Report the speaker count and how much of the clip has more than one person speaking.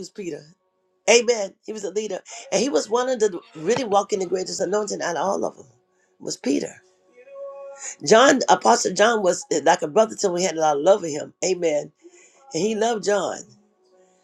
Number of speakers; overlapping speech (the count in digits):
1, no overlap